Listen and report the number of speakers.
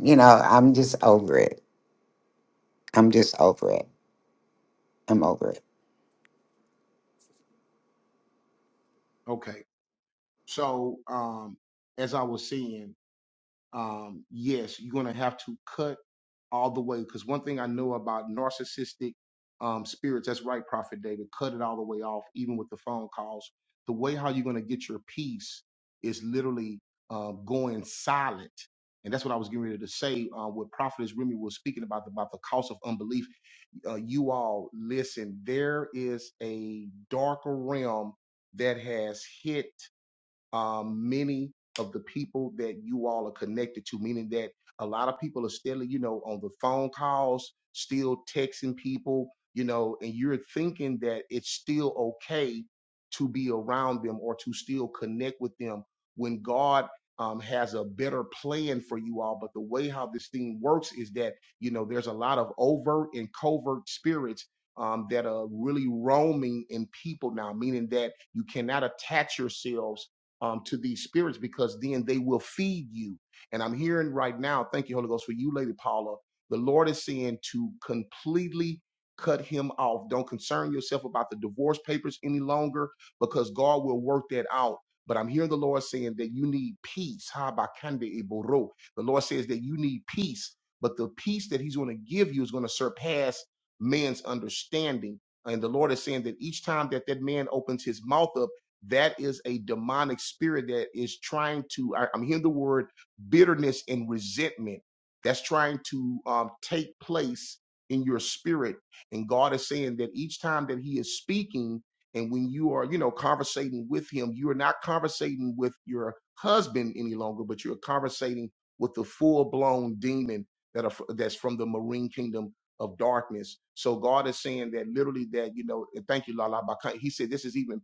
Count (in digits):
2